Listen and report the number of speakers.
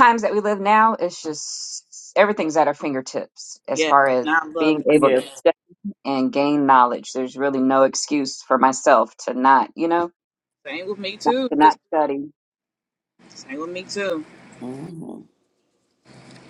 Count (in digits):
3